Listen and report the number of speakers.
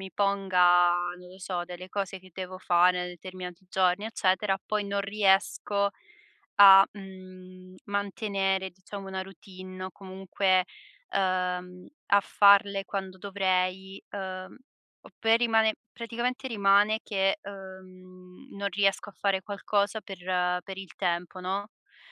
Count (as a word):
one